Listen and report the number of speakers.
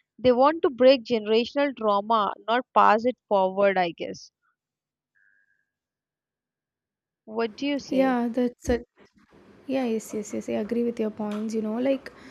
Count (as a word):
two